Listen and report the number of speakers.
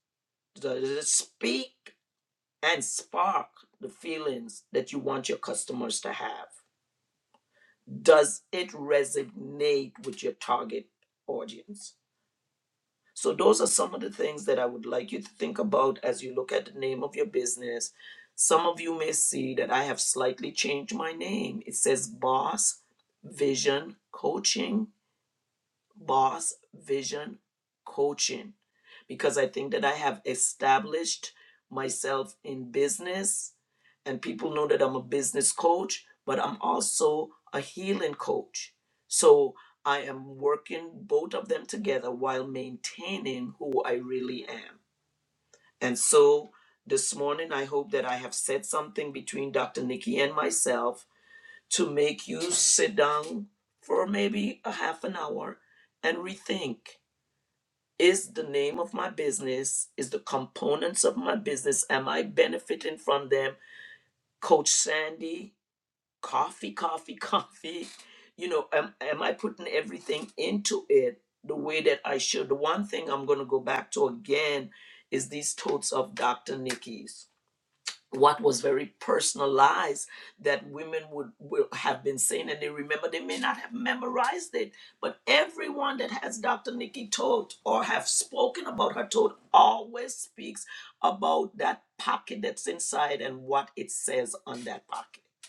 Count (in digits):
1